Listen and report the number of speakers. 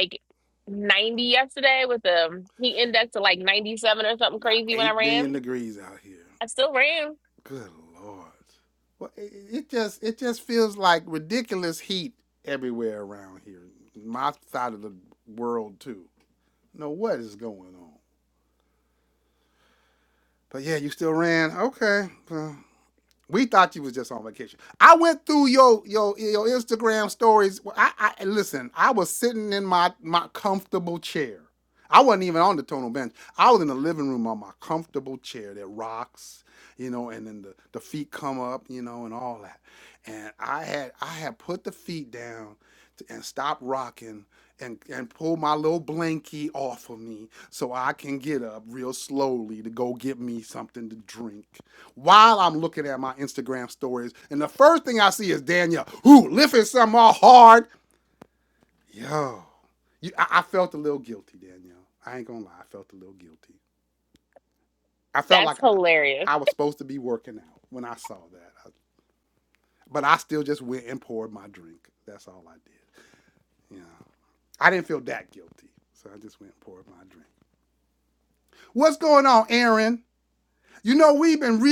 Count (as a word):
two